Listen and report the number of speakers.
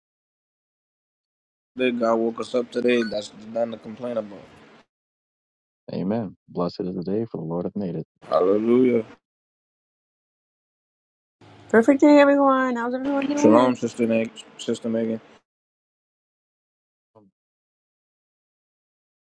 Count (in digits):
3